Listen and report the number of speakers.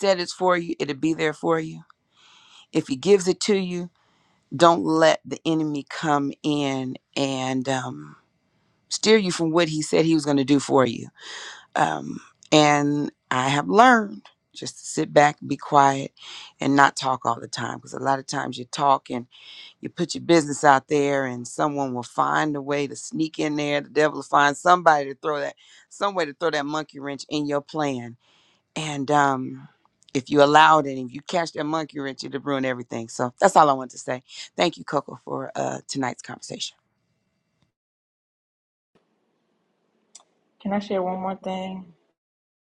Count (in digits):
2